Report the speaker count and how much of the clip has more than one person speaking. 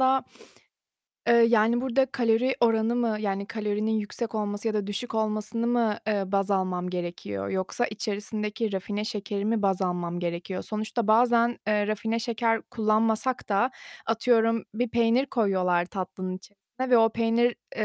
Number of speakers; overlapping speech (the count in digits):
1, no overlap